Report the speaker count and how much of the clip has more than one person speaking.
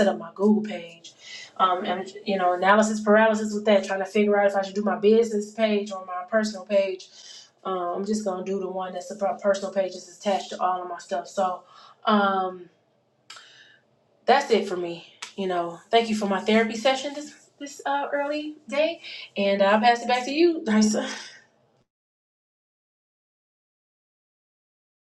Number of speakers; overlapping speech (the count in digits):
1, no overlap